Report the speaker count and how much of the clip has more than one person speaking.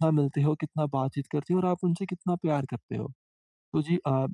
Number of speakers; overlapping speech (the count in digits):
1, no overlap